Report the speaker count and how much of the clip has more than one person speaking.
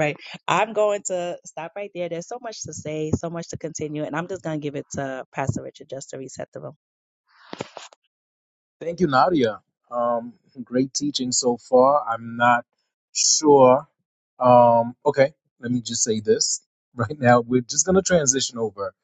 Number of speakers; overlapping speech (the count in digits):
2, no overlap